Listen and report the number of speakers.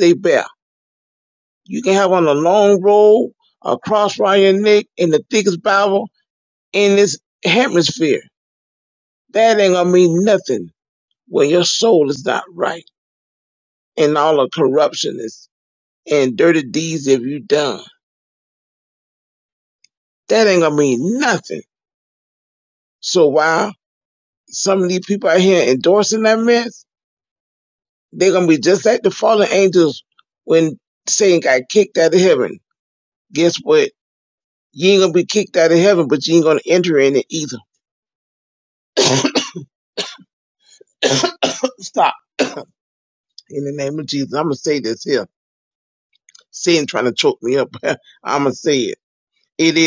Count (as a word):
one